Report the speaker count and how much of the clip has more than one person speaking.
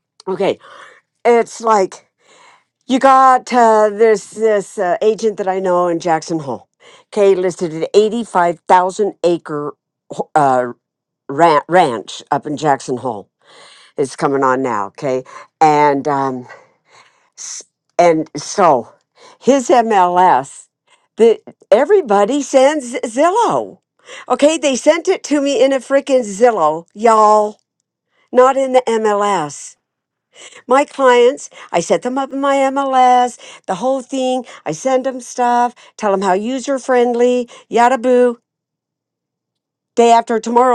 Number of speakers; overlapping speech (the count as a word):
one, no overlap